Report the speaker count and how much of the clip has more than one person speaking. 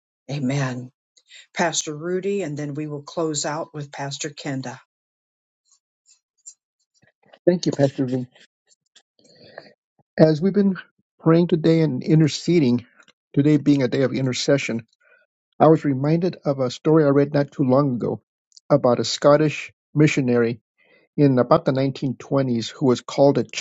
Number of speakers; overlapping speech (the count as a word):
two, no overlap